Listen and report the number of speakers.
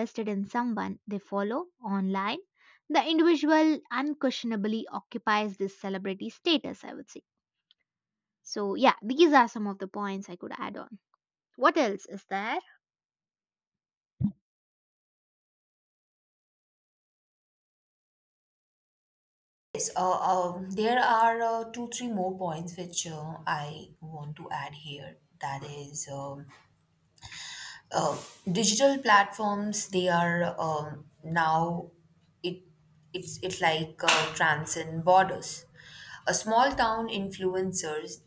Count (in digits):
2